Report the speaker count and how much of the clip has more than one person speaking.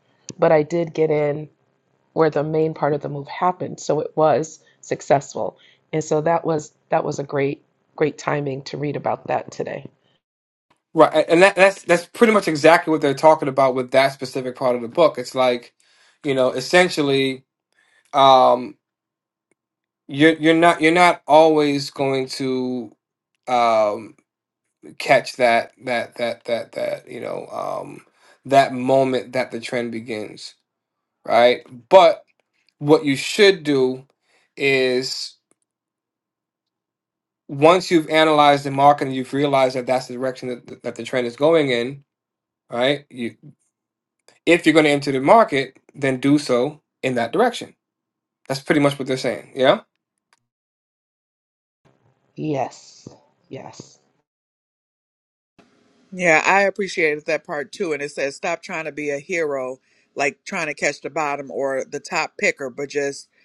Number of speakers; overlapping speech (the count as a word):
three, no overlap